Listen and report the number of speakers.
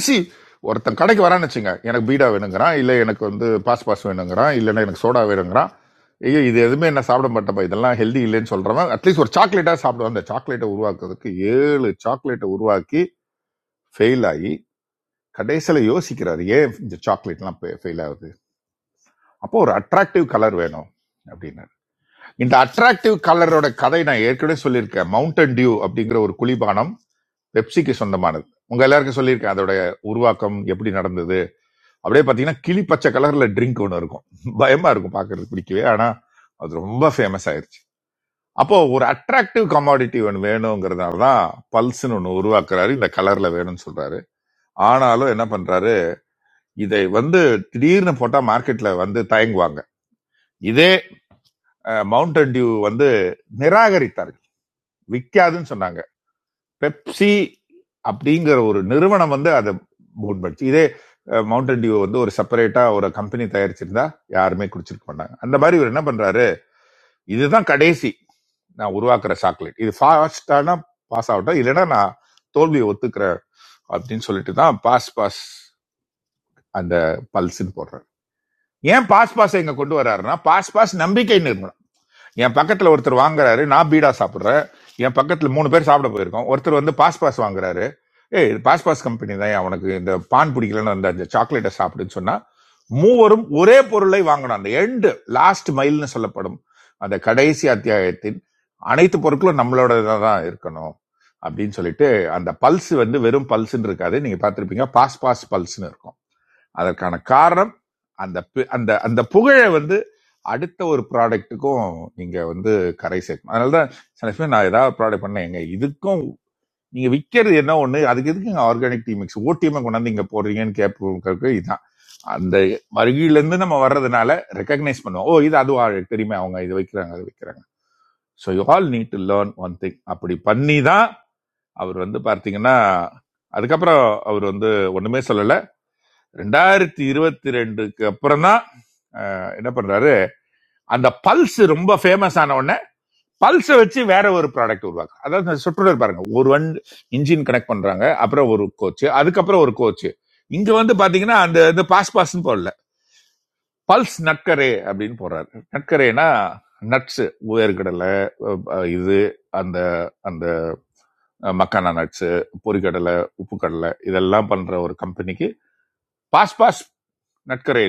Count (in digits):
1